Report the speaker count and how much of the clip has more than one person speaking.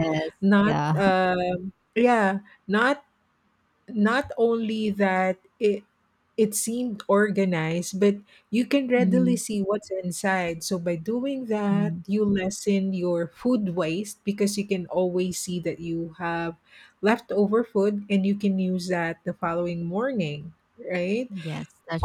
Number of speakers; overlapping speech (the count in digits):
2, about 5%